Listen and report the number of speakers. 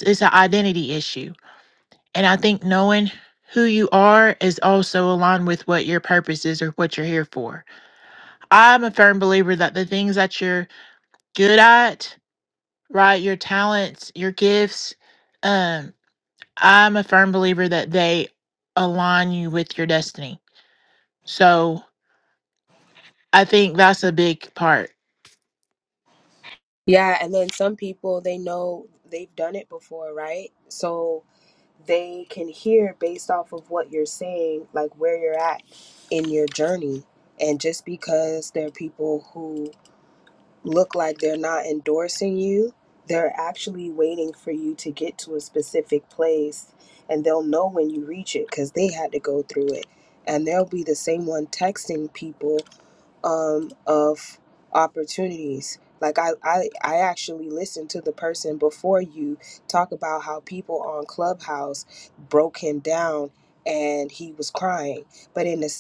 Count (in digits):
2